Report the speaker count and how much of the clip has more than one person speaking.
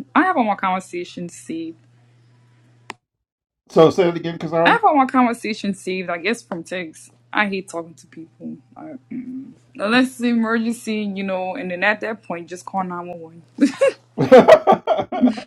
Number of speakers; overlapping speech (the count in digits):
2, about 1%